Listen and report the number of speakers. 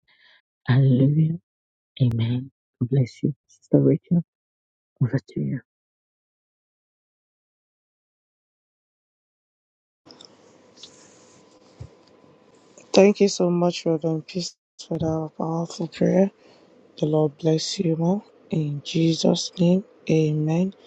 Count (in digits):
2